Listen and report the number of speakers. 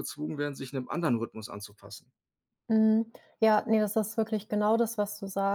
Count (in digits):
2